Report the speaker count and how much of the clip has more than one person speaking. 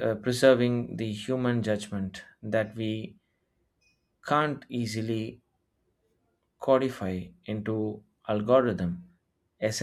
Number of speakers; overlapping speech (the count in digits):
1, no overlap